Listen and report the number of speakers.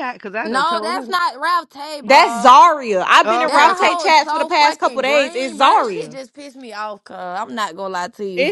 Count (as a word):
three